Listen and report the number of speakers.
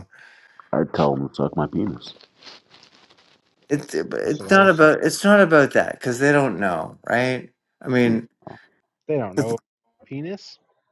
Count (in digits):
3